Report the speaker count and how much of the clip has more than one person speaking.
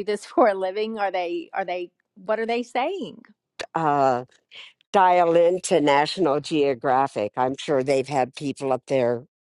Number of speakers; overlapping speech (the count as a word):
two, no overlap